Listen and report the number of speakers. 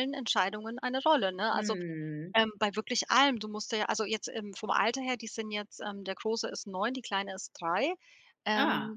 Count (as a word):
two